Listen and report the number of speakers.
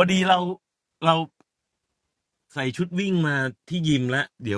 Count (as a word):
one